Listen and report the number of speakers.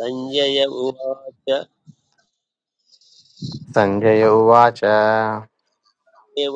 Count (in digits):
2